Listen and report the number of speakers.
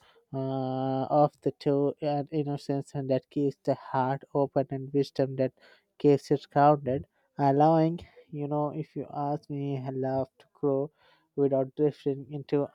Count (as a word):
one